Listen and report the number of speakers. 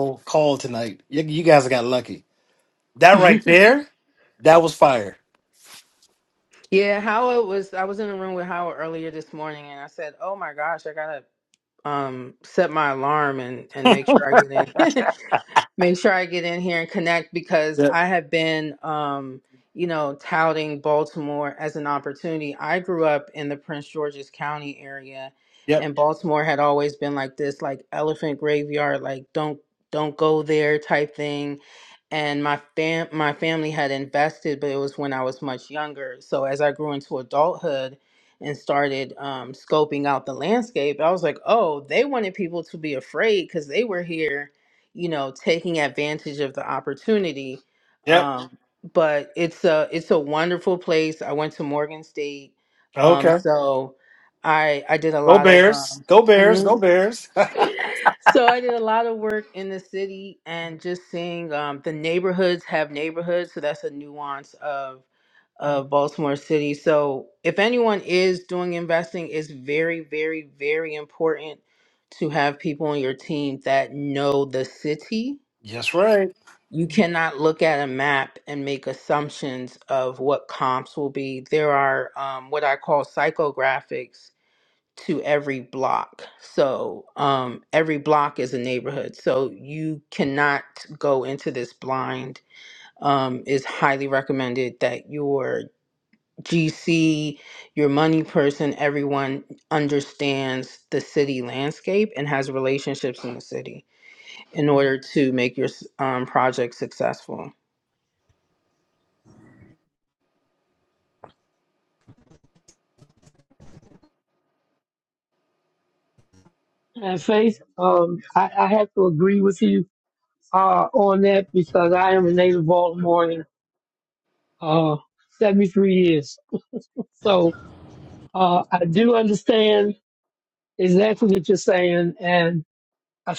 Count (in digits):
3